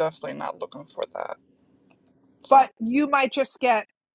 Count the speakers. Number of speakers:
2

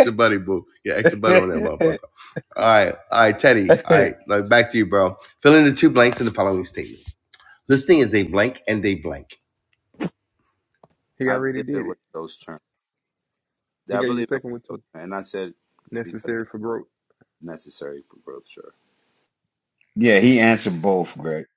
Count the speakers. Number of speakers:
4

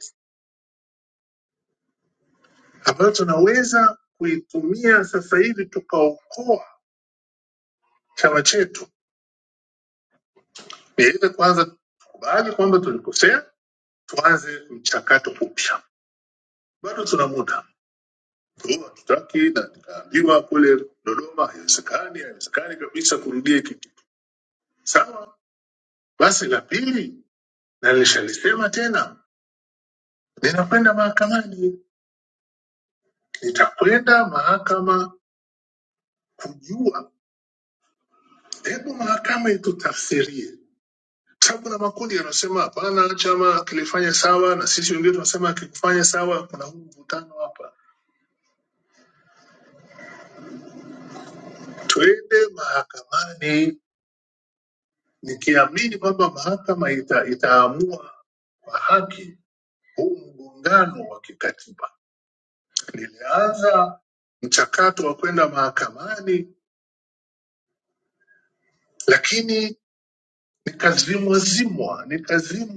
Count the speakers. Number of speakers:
1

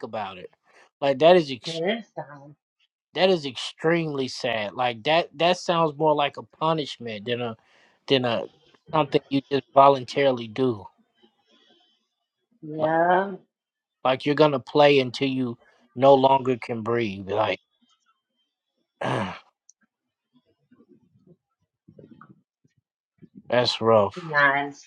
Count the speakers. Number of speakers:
2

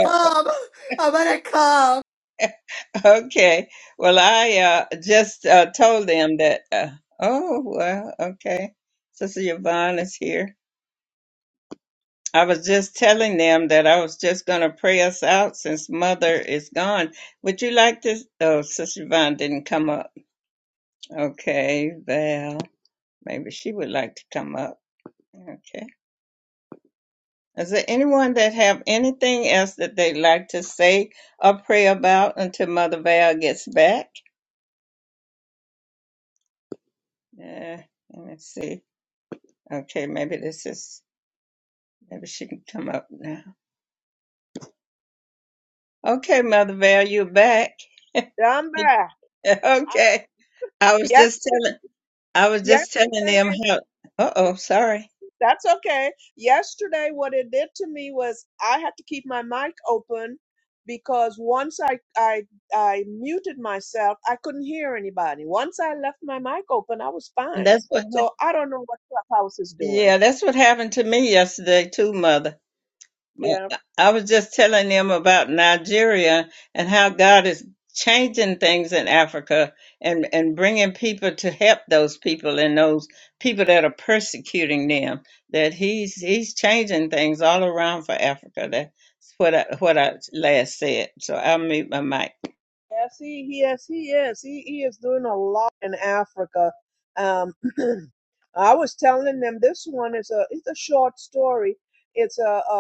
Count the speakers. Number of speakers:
3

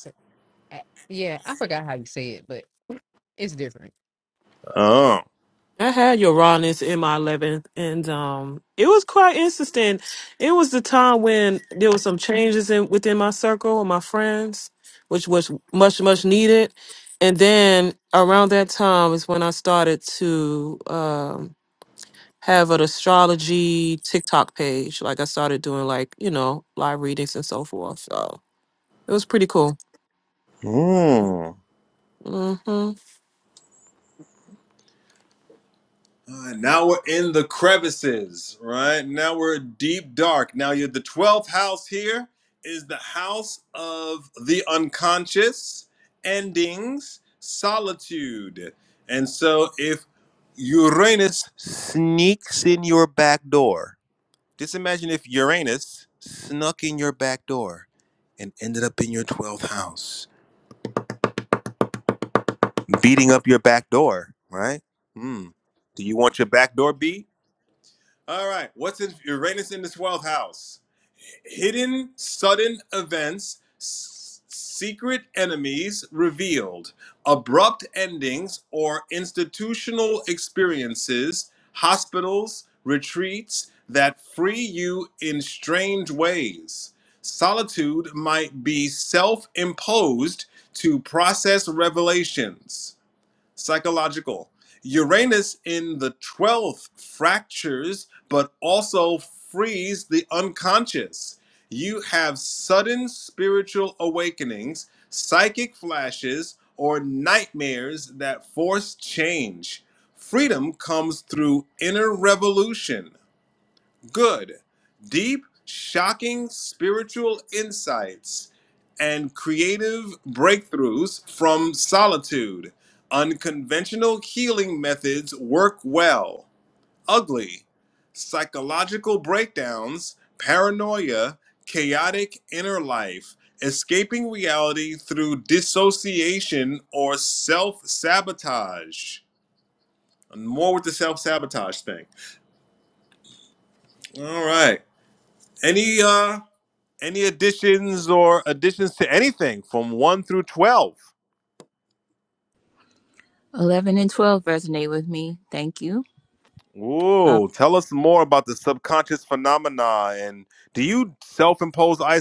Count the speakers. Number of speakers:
4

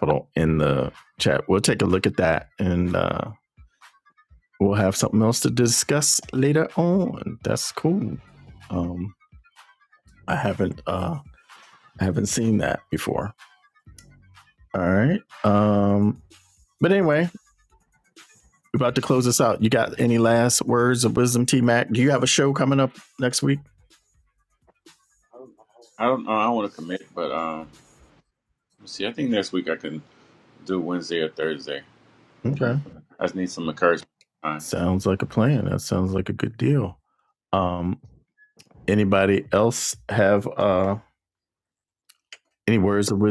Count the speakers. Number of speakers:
2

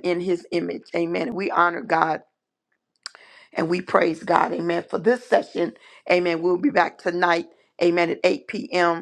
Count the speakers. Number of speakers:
1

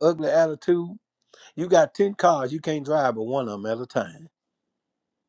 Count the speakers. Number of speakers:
1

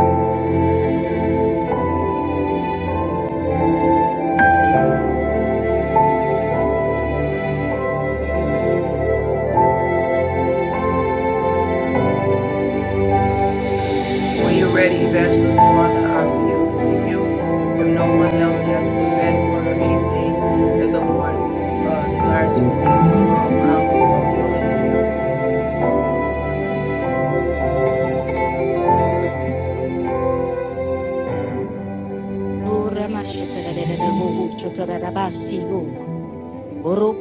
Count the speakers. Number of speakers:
2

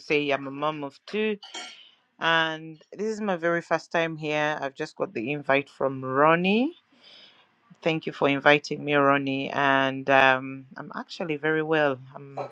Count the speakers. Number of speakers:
1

